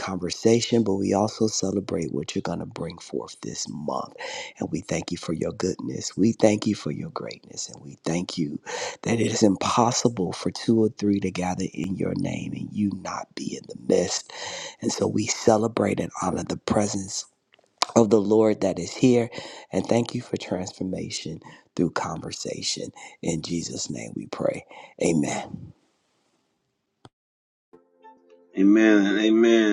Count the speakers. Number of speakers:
two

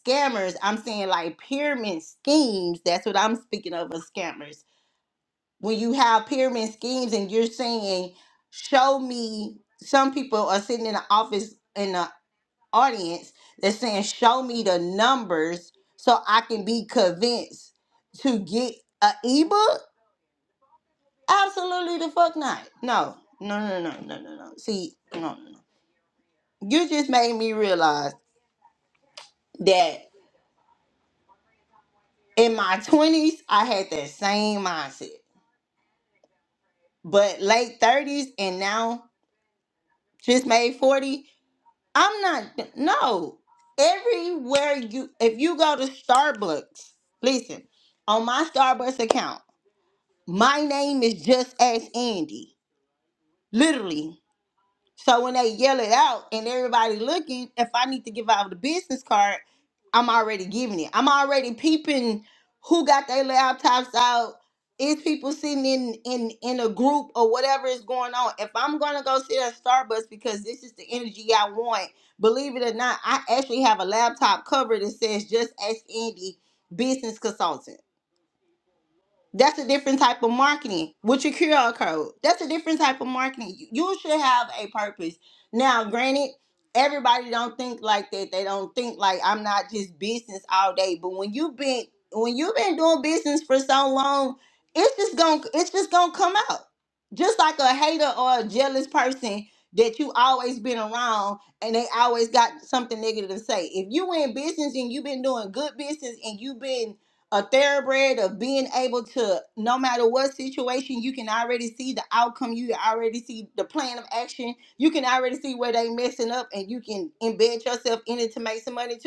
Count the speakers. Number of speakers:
one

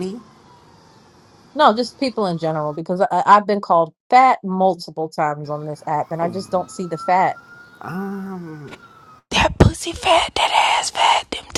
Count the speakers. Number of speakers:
three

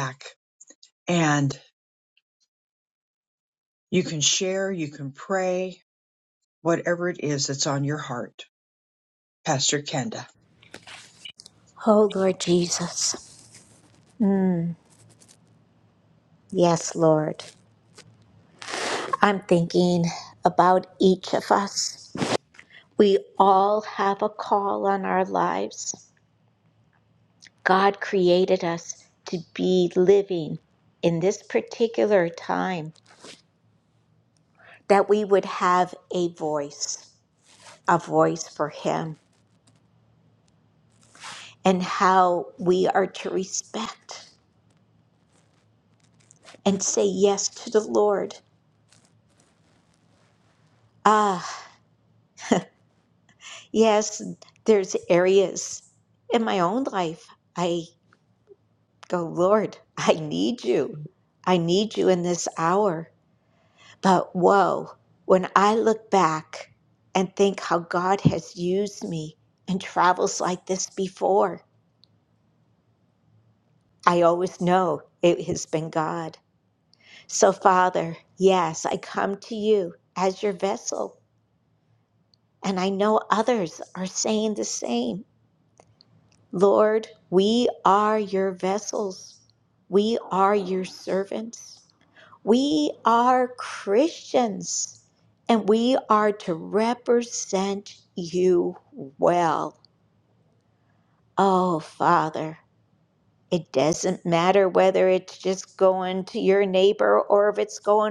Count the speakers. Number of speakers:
two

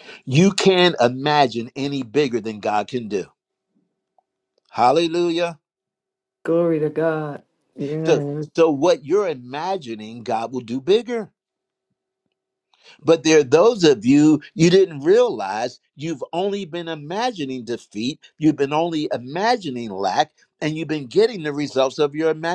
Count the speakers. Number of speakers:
two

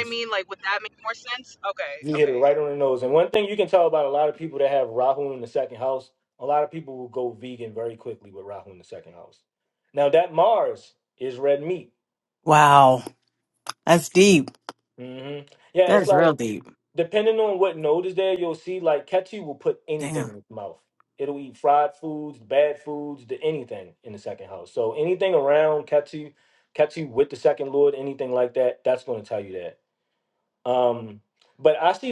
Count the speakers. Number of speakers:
three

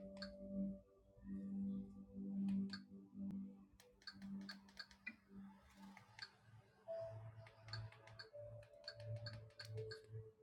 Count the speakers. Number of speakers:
zero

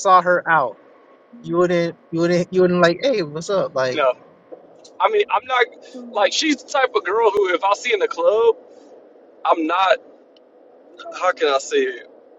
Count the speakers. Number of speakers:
two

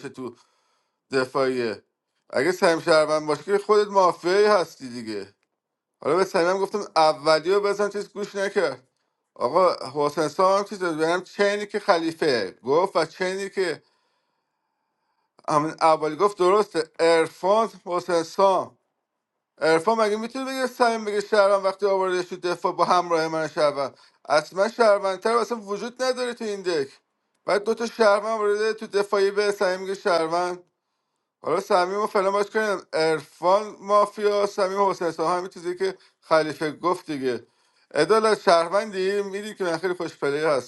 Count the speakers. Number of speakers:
one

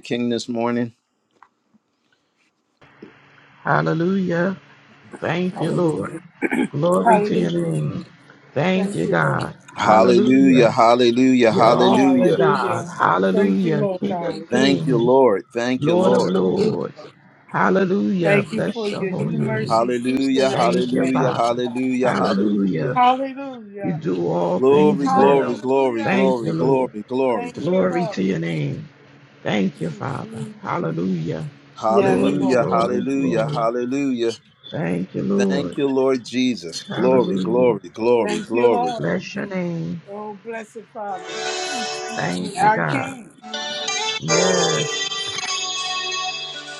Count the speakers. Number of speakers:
three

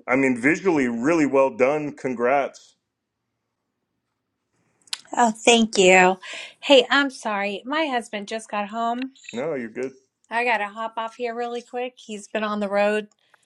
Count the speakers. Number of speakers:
two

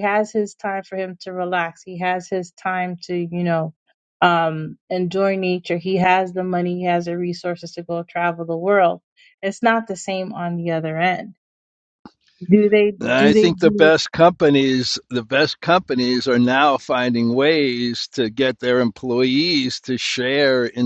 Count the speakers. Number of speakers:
two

